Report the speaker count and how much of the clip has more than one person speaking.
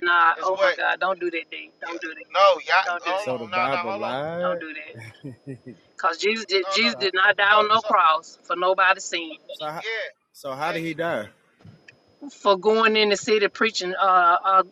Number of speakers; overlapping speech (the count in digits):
3, about 22%